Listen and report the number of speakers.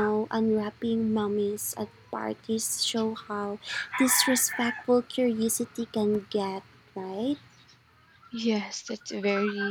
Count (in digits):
2